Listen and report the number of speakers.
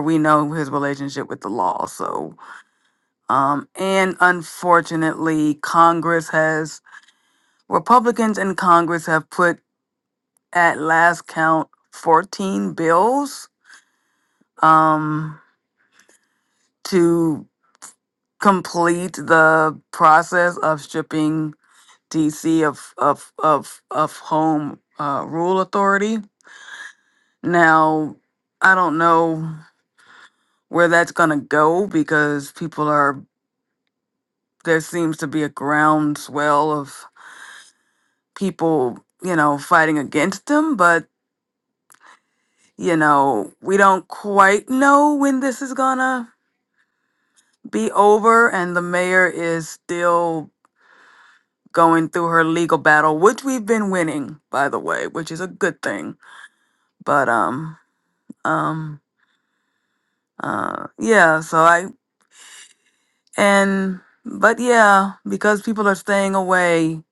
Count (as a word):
one